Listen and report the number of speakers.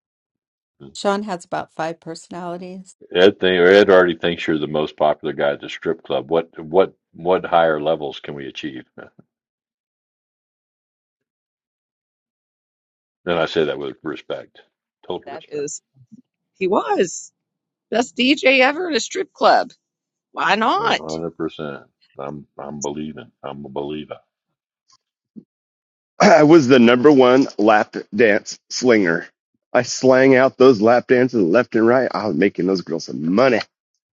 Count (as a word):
four